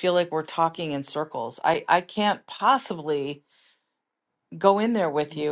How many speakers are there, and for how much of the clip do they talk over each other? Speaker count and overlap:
one, no overlap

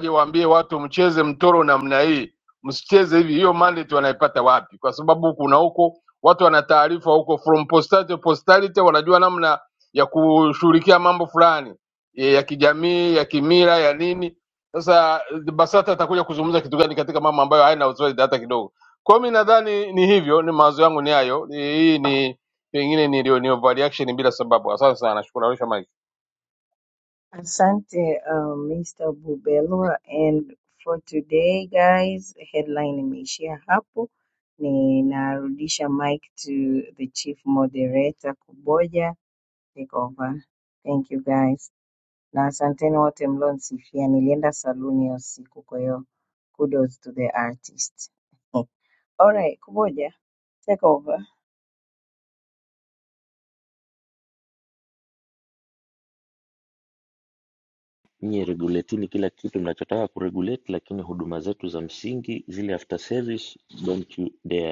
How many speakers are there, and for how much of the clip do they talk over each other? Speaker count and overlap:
three, no overlap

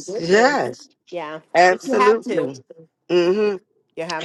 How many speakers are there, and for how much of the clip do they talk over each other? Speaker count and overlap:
two, about 41%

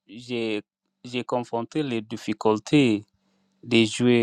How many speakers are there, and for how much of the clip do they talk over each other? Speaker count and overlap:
one, no overlap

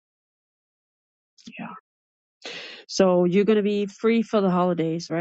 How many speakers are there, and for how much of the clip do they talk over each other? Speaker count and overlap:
one, no overlap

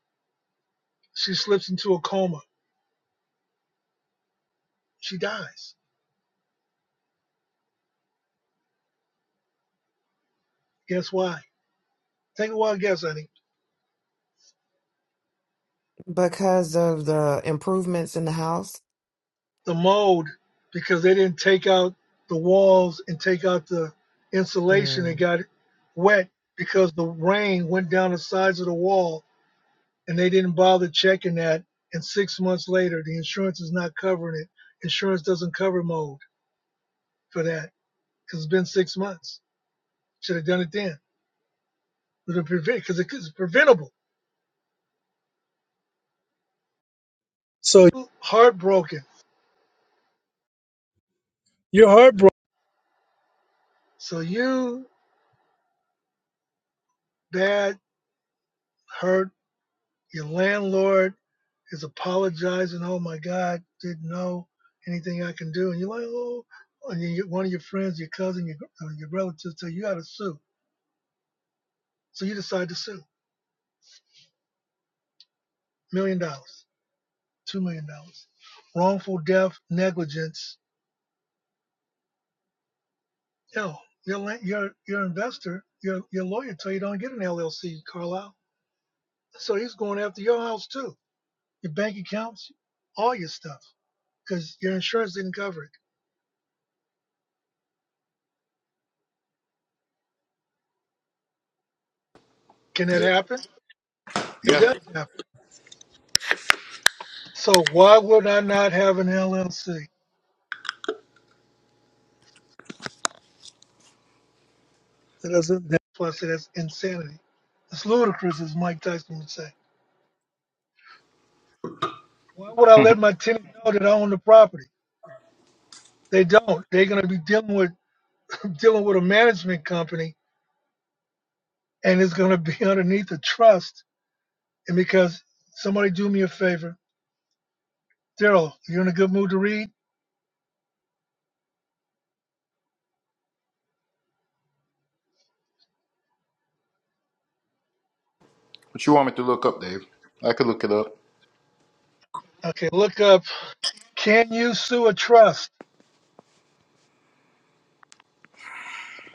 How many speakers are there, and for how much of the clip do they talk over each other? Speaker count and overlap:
three, under 1%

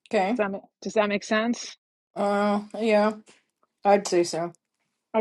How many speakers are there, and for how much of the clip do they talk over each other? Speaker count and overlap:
two, about 2%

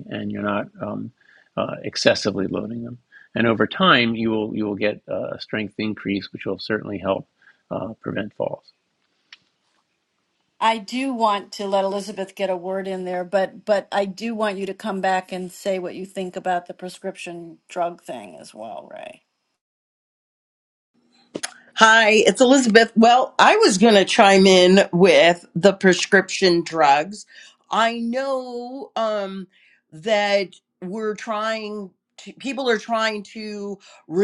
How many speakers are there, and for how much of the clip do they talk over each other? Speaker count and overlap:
three, no overlap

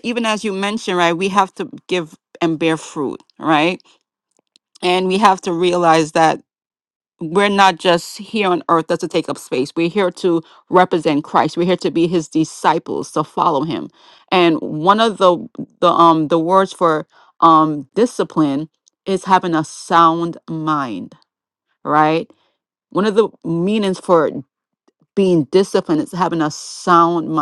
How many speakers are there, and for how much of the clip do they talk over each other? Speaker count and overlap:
one, no overlap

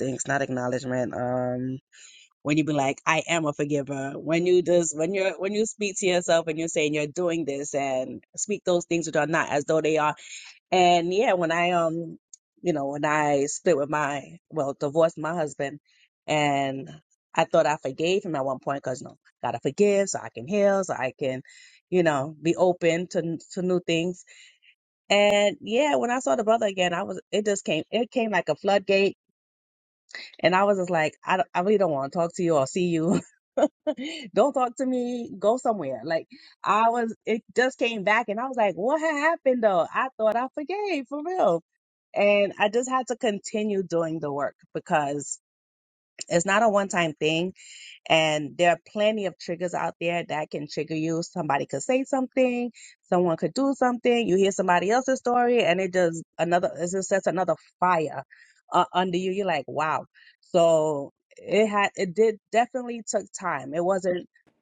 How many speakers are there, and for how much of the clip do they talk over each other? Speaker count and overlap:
one, no overlap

